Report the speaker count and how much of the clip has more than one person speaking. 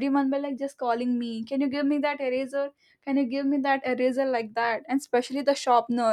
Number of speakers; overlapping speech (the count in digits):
1, no overlap